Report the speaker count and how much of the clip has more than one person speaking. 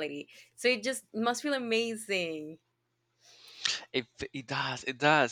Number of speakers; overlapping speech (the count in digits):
2, no overlap